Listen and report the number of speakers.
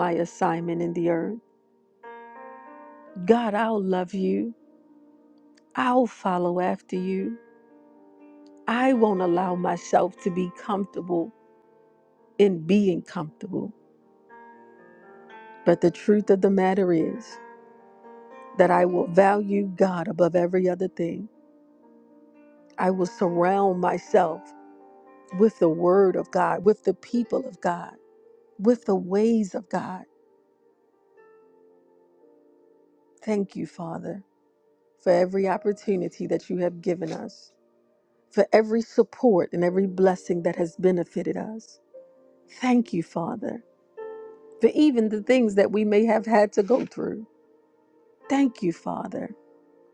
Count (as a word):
one